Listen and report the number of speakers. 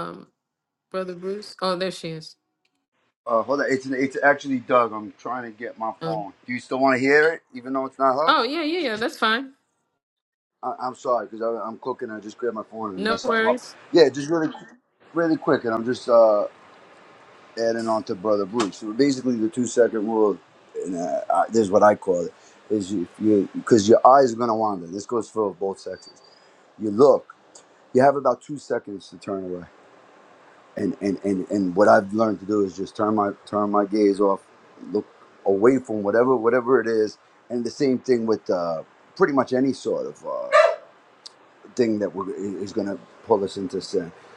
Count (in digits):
2